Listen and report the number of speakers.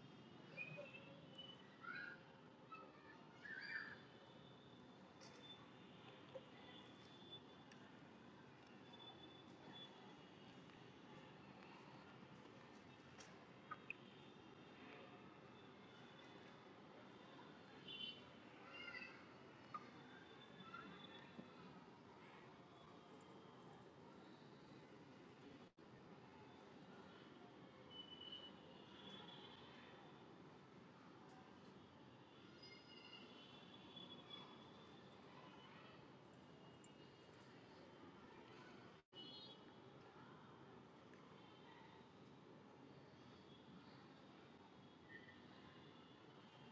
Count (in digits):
0